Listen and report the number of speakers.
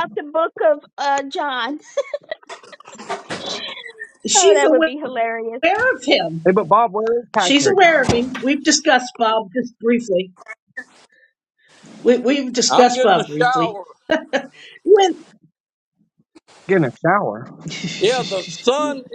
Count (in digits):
4